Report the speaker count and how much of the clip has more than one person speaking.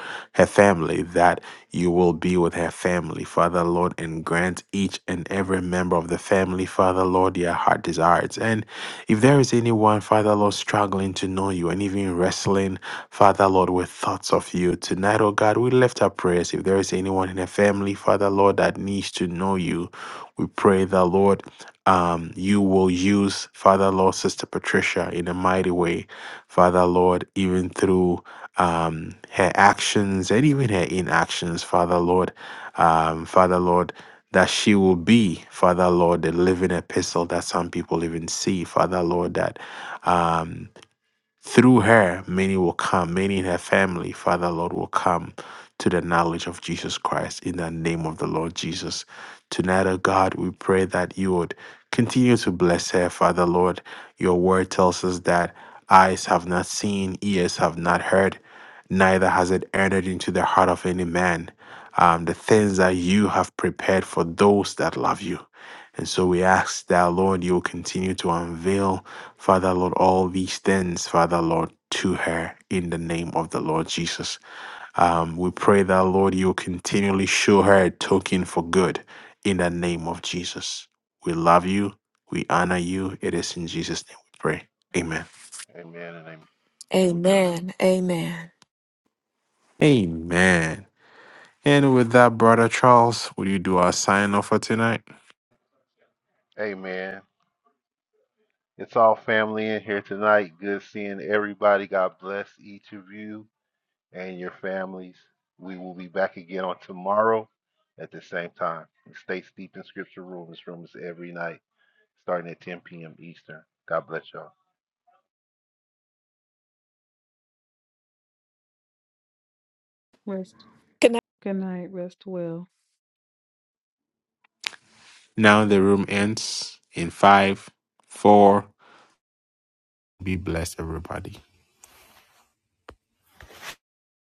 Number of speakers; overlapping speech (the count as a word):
four, no overlap